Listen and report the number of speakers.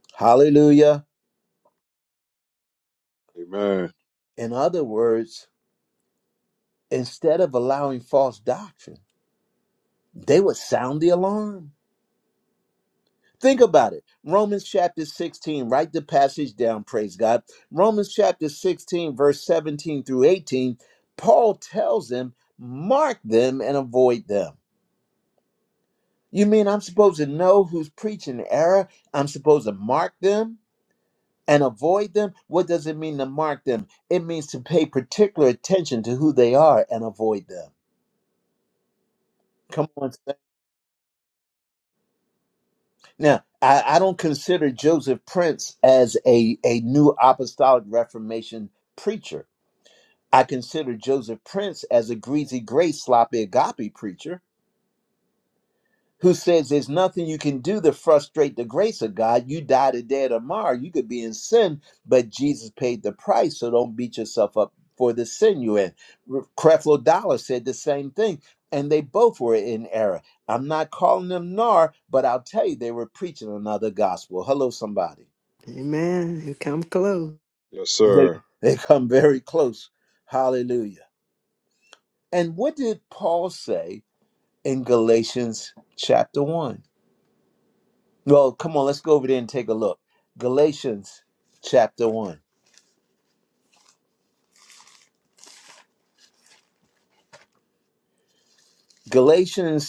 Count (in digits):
3